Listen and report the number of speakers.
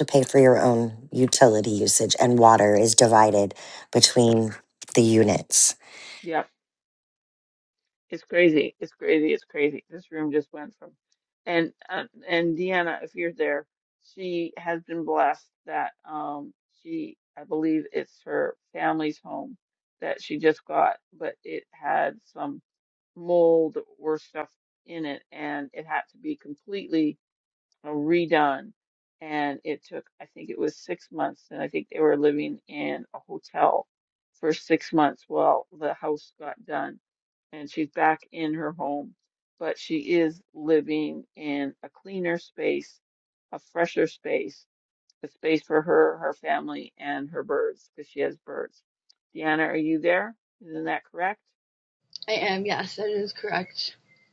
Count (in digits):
3